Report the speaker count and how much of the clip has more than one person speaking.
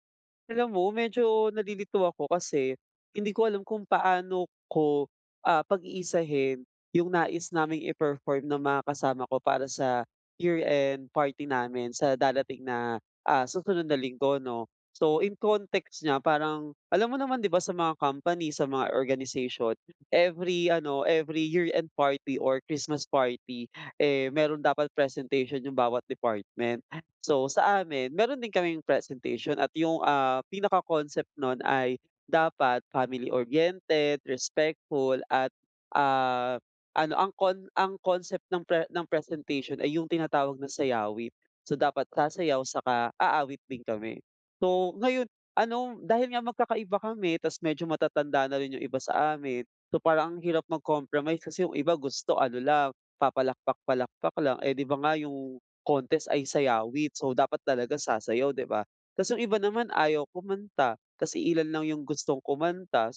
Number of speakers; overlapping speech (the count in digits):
1, no overlap